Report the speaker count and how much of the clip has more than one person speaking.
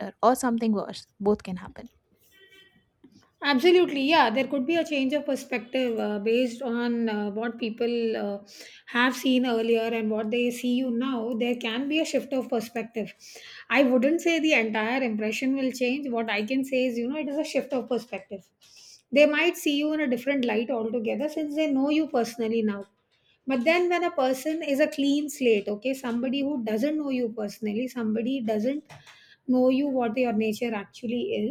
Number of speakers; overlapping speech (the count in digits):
2, no overlap